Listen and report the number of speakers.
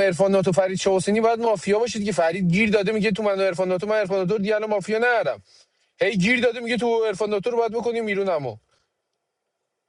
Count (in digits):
1